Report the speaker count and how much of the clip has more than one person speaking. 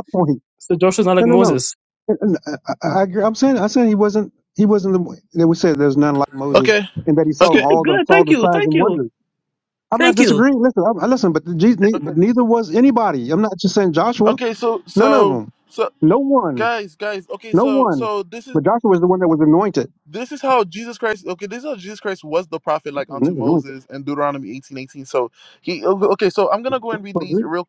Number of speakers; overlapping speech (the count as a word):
three, about 17%